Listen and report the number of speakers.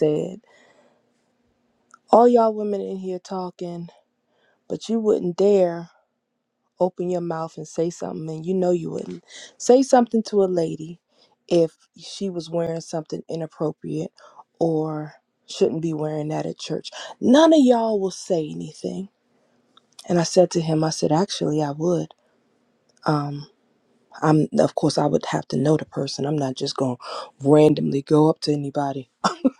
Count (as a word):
one